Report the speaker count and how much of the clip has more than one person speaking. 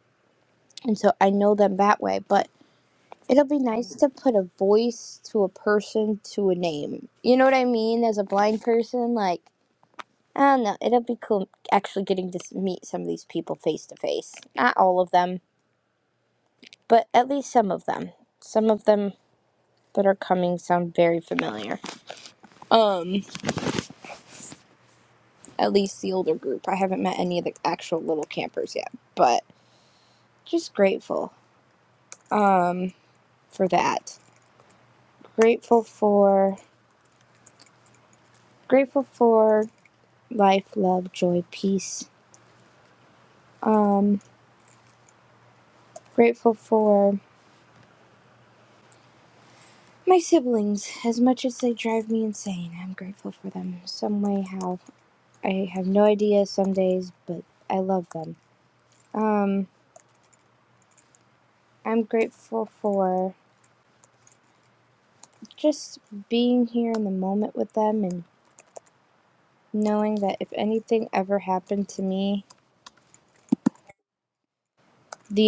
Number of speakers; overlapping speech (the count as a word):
one, no overlap